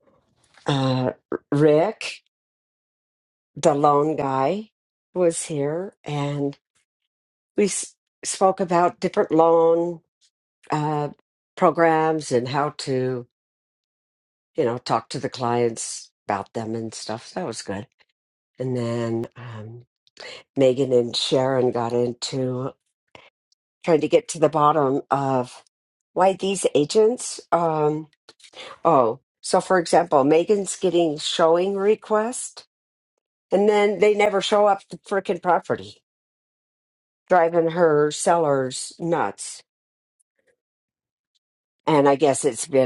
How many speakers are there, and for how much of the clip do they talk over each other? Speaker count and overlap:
1, no overlap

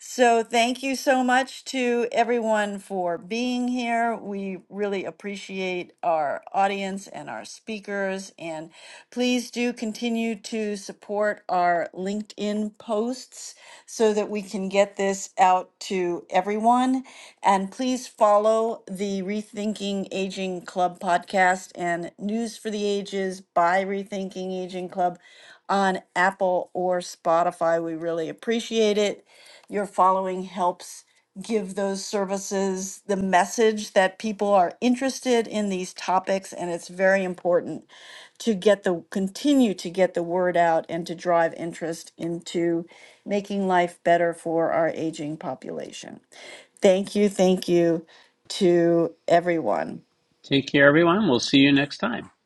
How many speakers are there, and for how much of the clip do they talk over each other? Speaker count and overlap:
2, no overlap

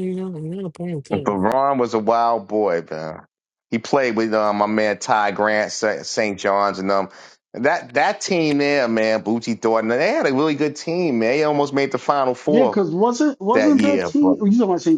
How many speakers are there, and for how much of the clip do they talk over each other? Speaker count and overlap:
3, about 9%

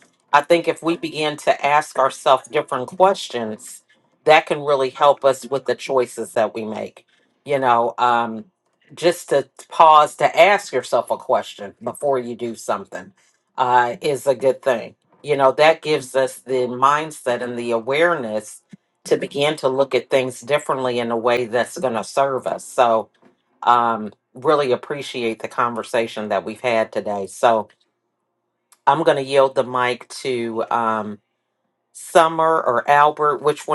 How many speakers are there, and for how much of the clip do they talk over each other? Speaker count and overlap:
1, no overlap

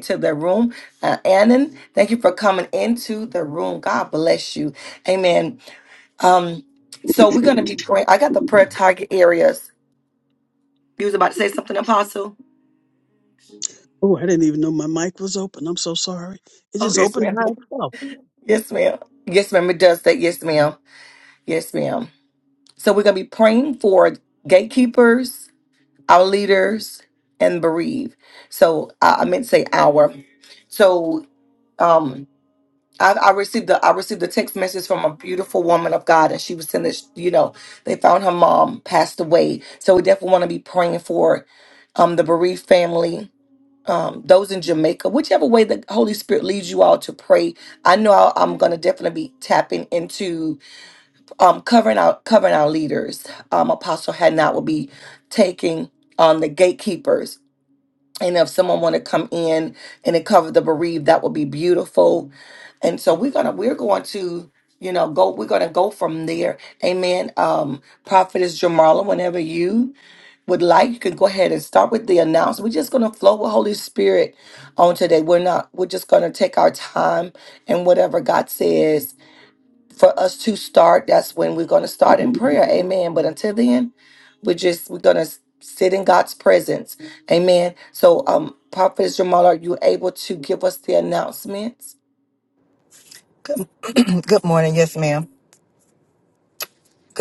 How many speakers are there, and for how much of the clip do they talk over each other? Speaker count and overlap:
3, about 1%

